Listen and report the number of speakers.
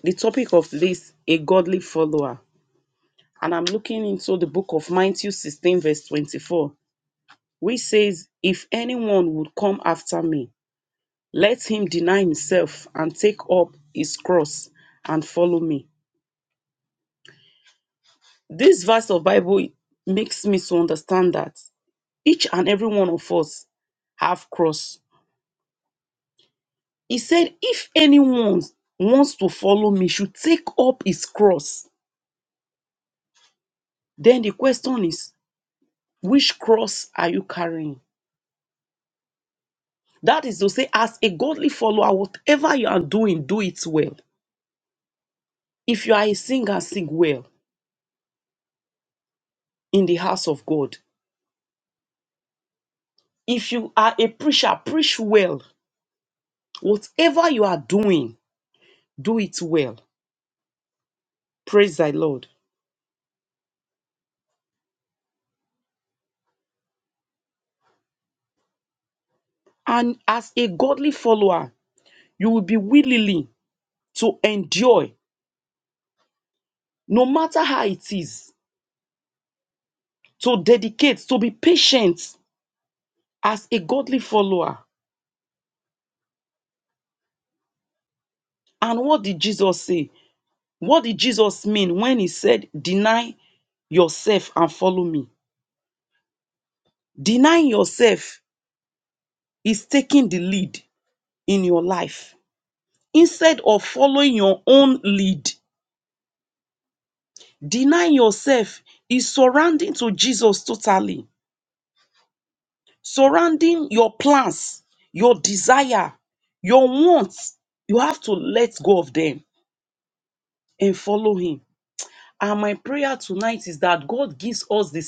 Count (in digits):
1